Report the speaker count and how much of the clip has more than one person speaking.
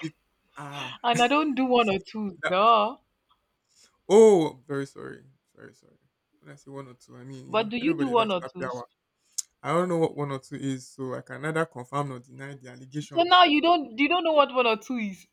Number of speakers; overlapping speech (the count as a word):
two, about 9%